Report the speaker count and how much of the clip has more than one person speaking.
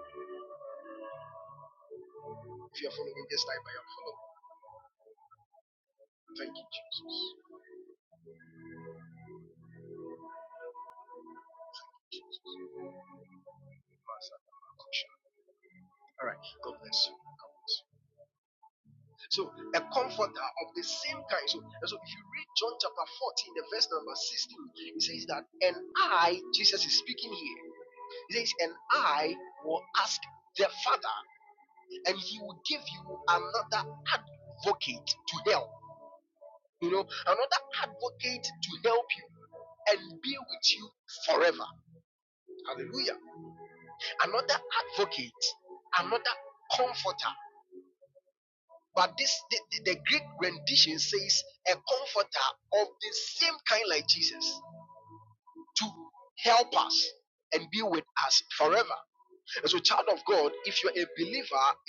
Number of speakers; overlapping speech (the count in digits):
1, no overlap